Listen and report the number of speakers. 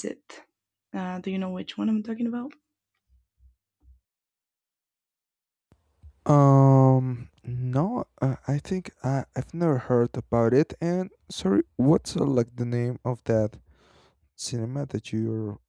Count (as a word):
two